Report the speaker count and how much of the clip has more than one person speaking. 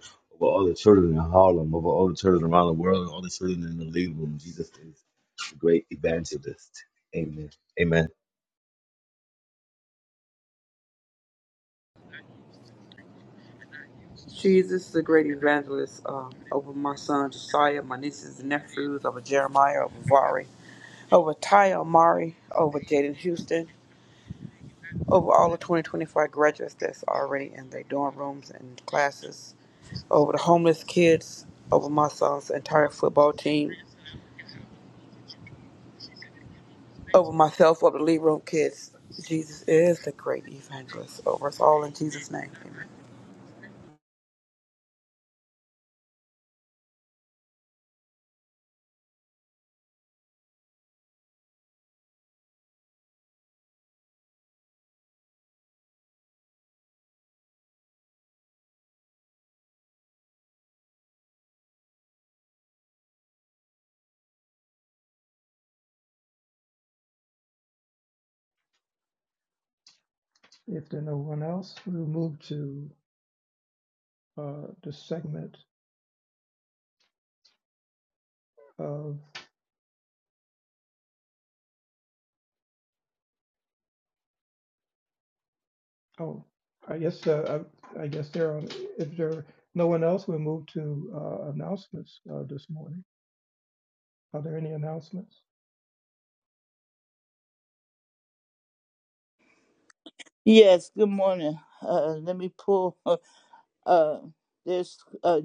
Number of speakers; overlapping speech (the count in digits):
4, no overlap